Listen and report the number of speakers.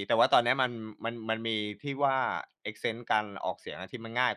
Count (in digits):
1